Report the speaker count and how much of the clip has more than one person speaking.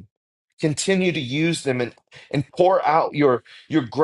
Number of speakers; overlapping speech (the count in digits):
1, no overlap